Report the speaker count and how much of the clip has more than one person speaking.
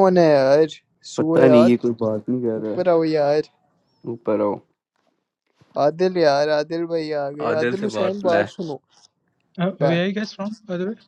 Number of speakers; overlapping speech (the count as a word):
three, about 16%